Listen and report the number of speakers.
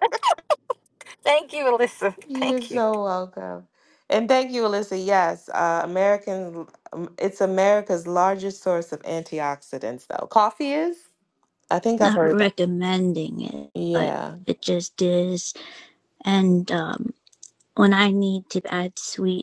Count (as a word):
three